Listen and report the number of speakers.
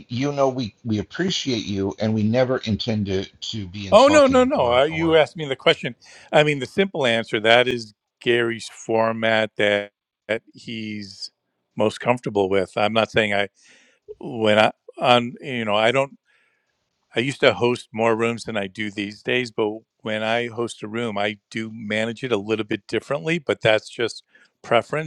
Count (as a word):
two